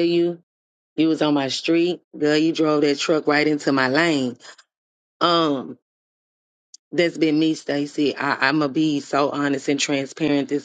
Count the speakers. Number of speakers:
1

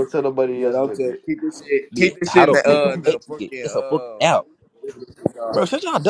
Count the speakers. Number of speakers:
3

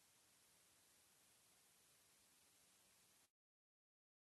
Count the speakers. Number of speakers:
0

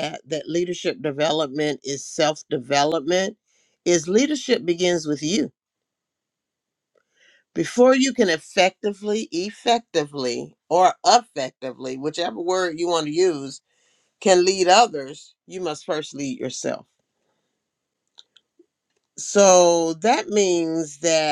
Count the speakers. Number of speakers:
1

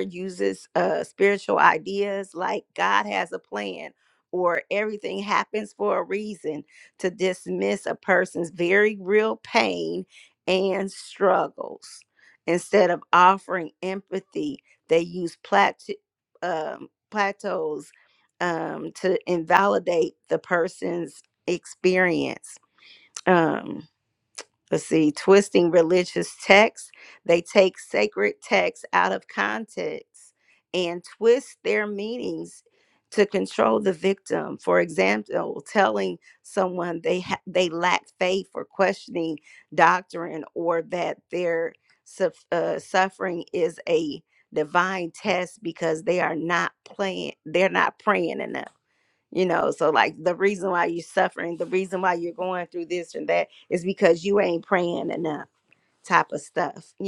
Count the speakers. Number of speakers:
1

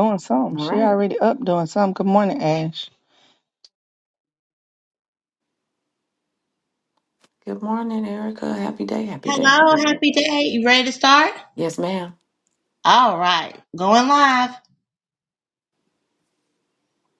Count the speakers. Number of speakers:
3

